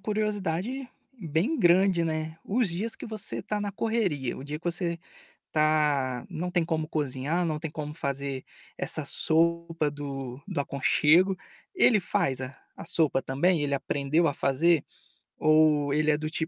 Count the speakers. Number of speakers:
one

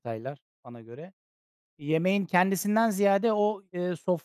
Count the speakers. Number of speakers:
one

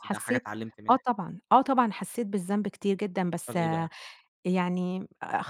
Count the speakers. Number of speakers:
two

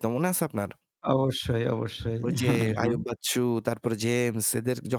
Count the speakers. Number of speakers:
two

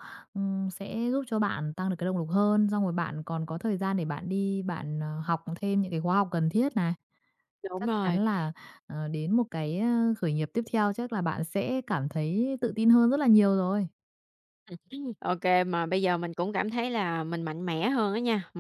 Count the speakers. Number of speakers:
two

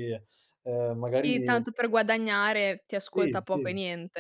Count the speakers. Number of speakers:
two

